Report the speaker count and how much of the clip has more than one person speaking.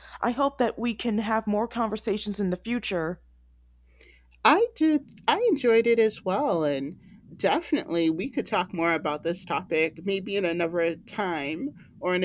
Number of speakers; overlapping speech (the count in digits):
2, no overlap